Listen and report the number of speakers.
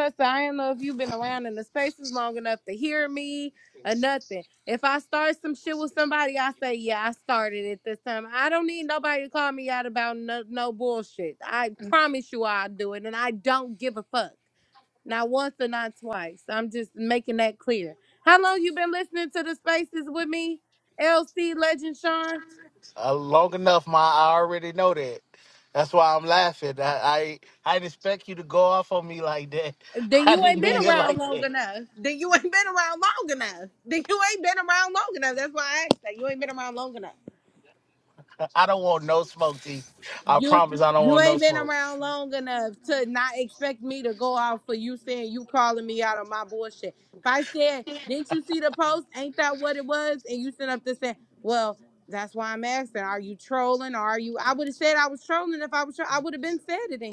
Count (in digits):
2